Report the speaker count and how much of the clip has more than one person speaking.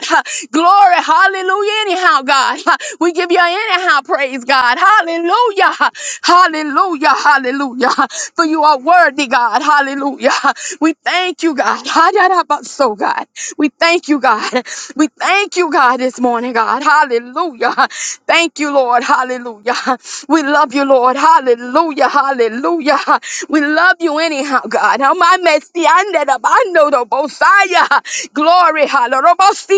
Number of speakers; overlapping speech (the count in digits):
1, no overlap